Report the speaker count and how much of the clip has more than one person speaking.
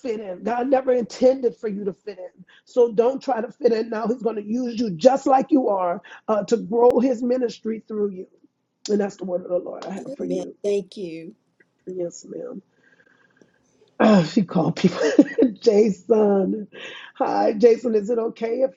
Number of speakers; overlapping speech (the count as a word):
two, about 3%